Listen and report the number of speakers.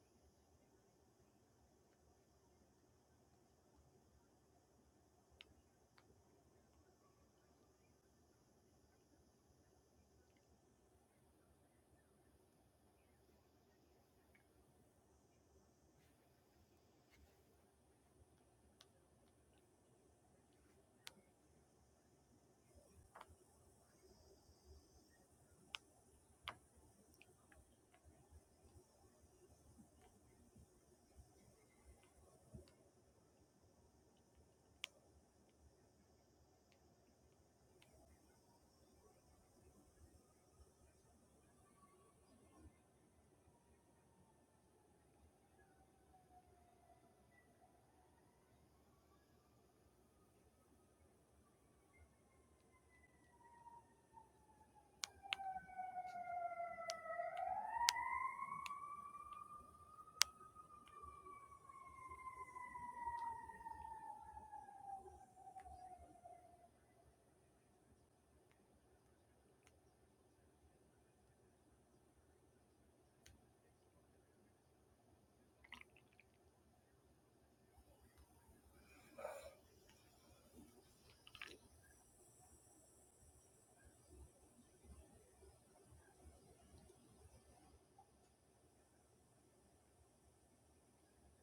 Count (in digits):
0